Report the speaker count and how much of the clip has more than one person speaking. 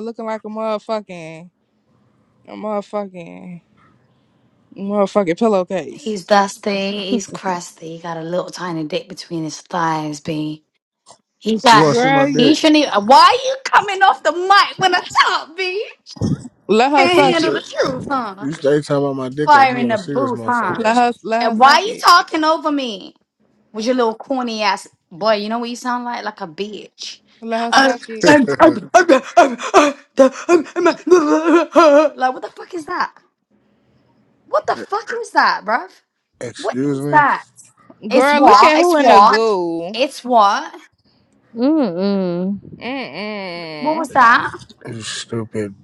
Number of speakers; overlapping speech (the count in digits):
4, about 16%